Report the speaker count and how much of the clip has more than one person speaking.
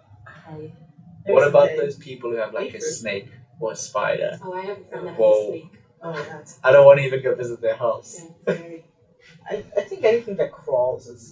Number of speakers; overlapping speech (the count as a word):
three, about 22%